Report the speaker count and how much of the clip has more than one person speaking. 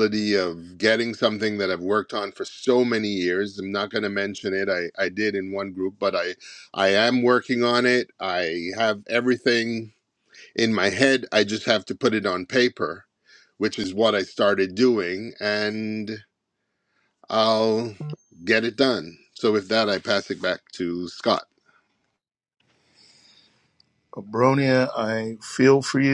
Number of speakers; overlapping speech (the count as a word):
two, no overlap